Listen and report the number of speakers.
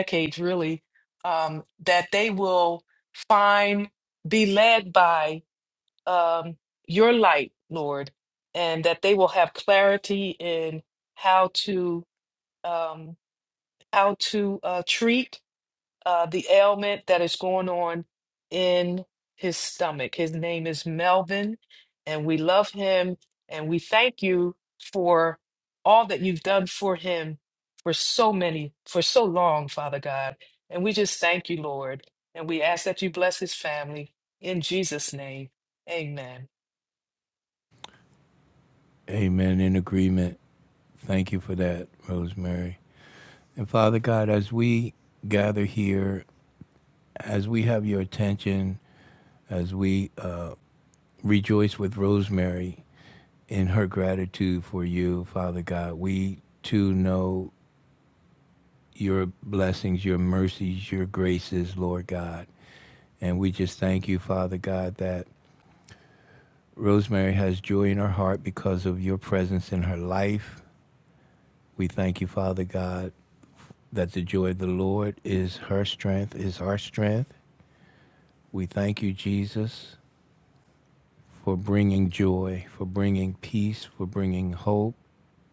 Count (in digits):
2